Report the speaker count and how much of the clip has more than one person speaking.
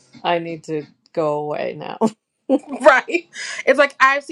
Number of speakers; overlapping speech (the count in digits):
2, no overlap